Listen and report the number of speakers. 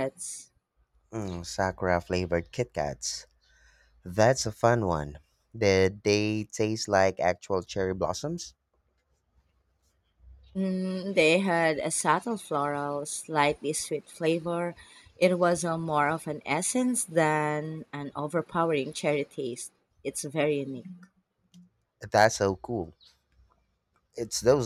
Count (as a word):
two